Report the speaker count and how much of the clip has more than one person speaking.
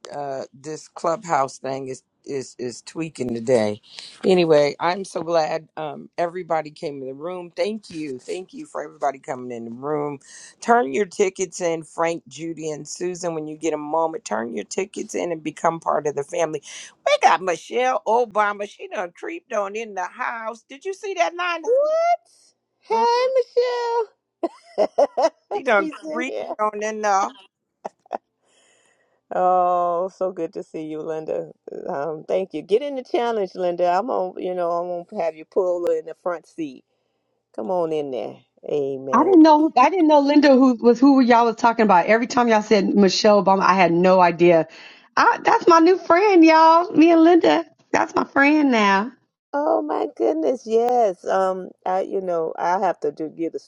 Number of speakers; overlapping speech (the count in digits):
3, about 3%